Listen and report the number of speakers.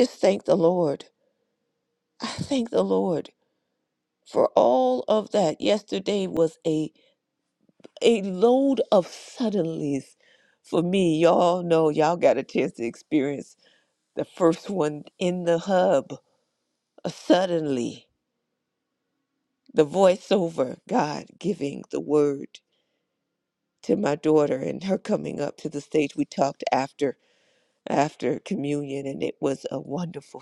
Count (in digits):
1